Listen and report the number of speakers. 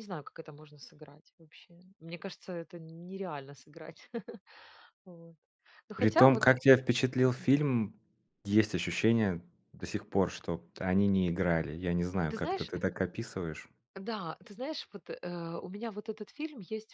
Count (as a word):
two